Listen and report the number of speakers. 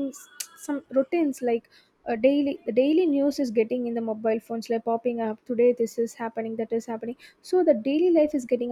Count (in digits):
1